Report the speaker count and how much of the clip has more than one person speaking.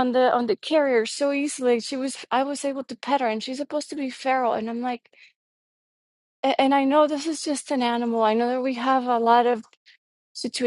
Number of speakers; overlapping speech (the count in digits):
1, no overlap